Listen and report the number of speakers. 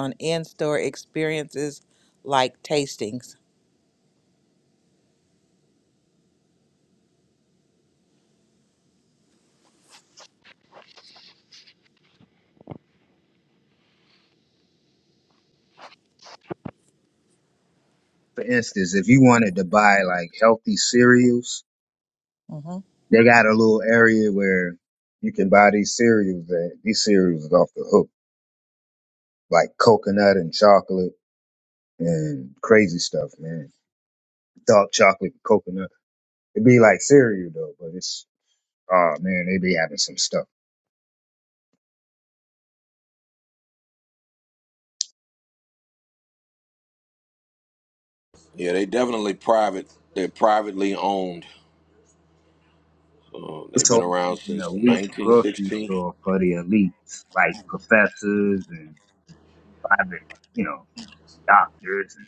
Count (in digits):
3